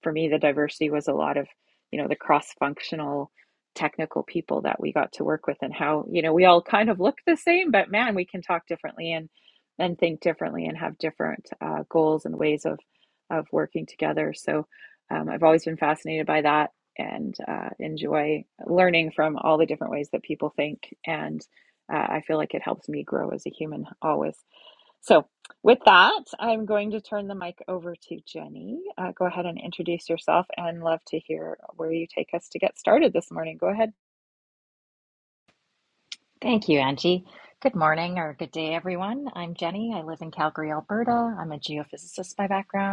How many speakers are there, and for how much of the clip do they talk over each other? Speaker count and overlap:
two, no overlap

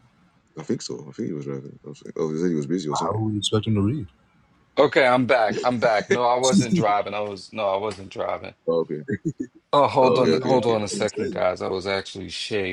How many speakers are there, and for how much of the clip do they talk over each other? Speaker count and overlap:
three, about 13%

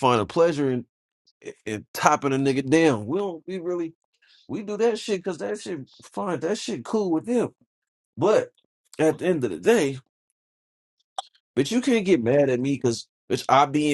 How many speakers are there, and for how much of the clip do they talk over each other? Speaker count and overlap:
one, no overlap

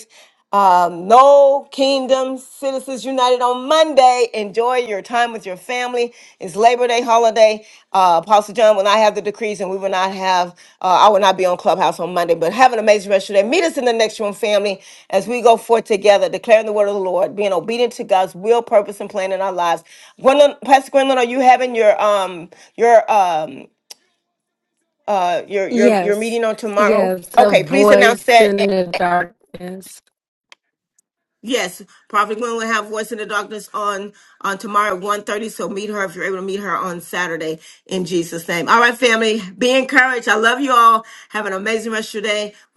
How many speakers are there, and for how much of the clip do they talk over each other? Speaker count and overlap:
two, about 5%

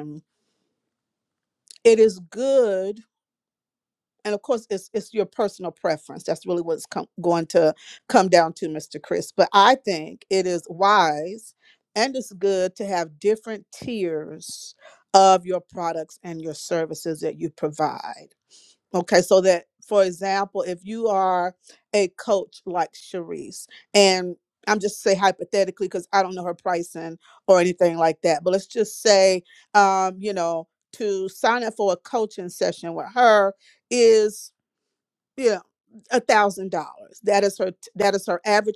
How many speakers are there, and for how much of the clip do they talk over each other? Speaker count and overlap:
one, no overlap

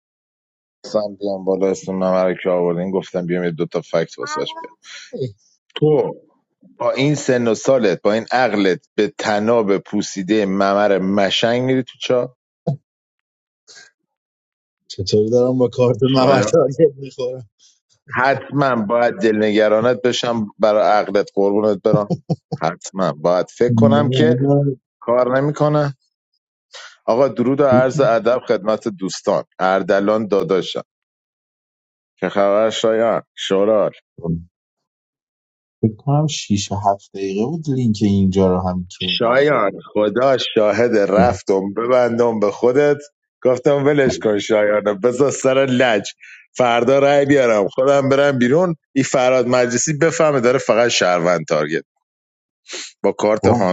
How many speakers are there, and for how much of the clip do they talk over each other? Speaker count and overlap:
two, about 5%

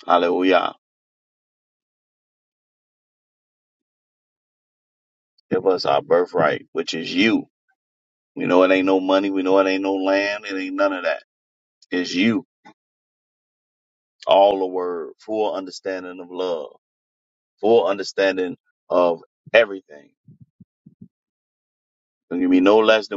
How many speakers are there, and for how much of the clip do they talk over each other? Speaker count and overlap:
one, no overlap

